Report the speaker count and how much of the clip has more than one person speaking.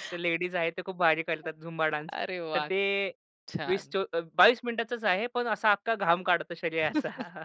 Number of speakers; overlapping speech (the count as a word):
two, about 5%